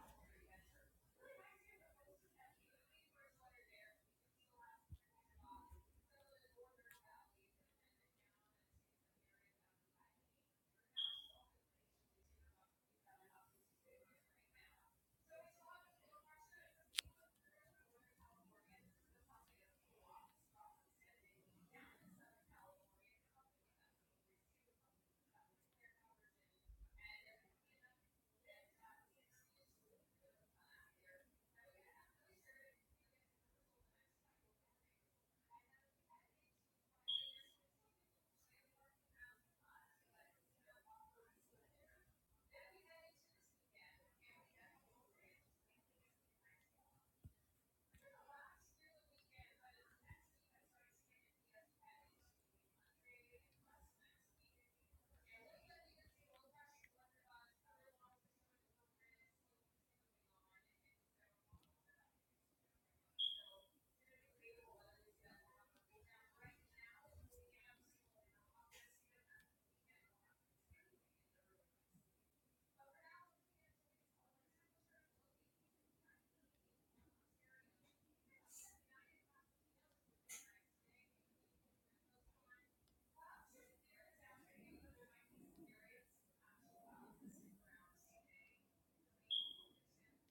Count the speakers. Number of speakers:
zero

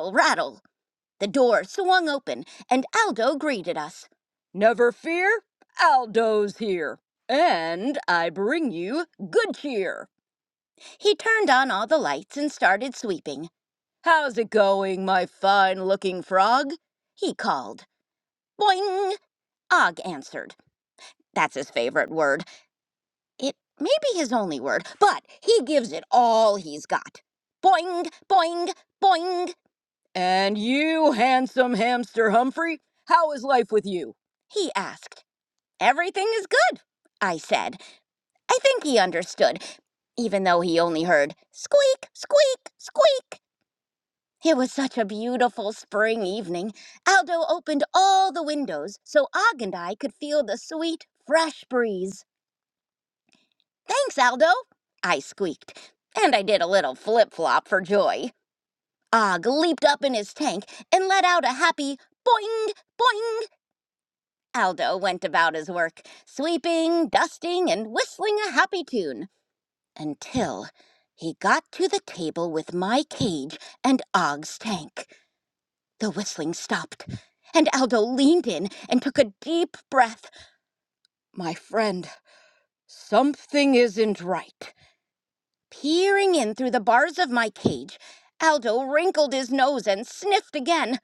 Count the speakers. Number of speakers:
one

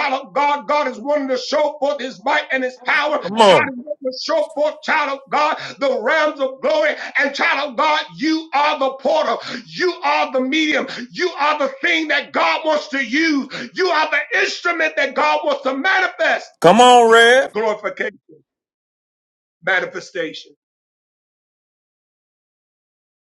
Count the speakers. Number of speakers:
two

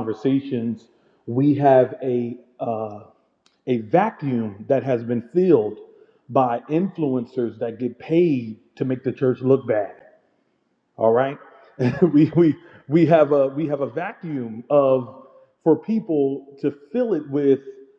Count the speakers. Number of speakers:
one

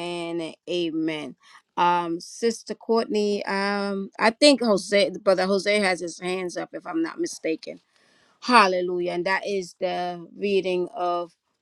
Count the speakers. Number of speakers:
one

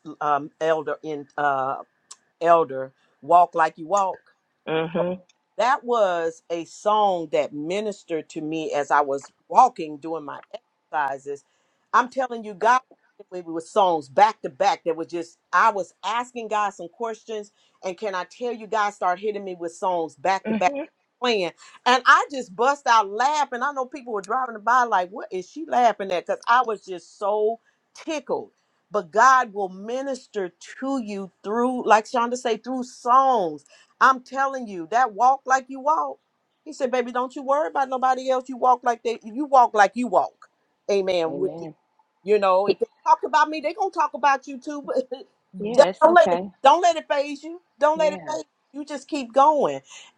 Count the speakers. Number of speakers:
two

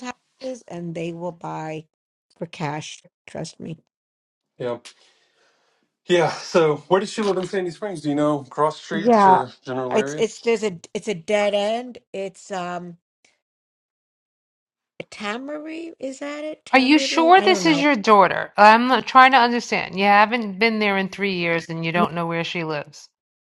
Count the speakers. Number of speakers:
three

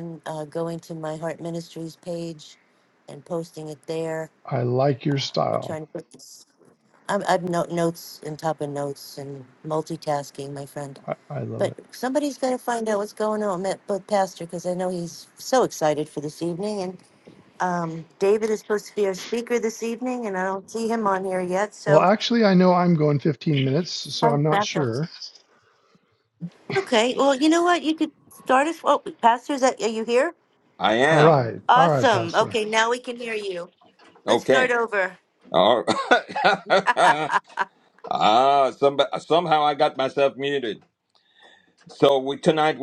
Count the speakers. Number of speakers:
three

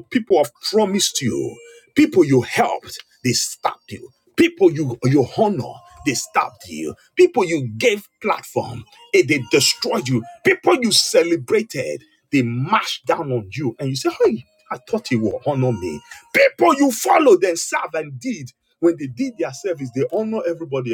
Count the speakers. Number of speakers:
one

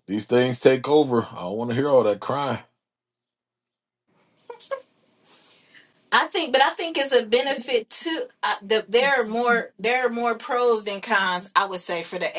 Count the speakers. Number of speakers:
two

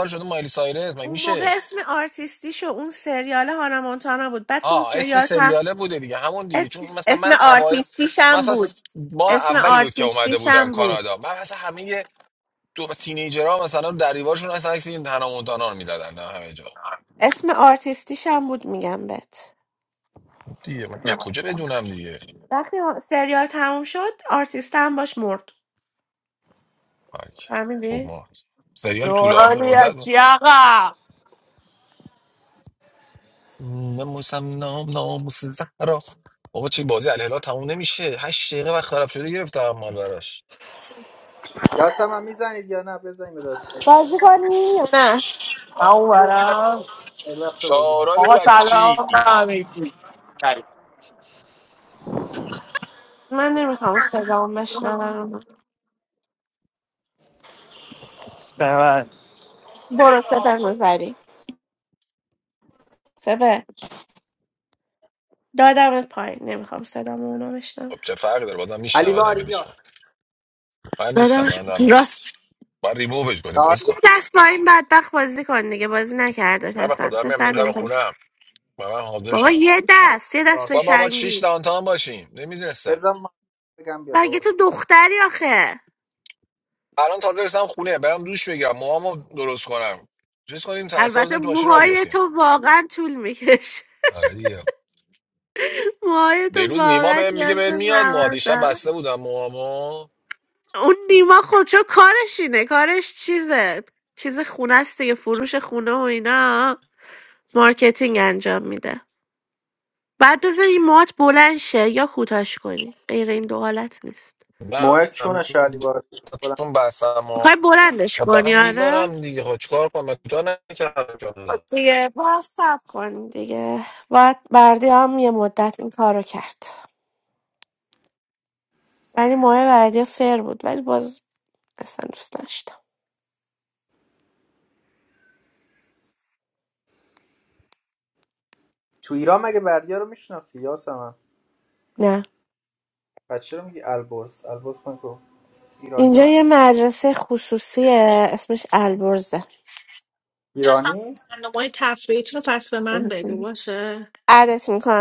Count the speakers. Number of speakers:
five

